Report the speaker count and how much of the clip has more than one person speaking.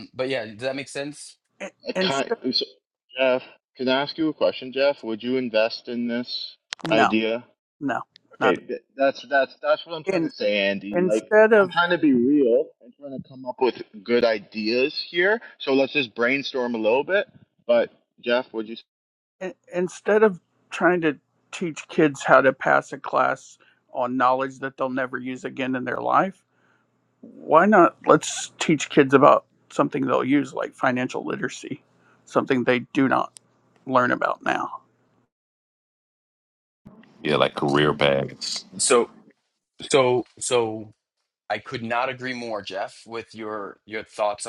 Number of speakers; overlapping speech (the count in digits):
4, about 4%